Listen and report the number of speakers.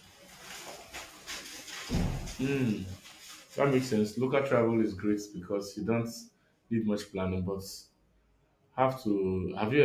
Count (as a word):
one